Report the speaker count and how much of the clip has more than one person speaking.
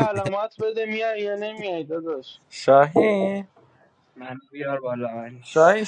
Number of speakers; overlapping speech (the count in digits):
3, about 6%